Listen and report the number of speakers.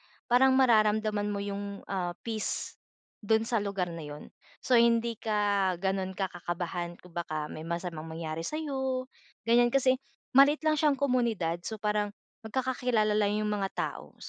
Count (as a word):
one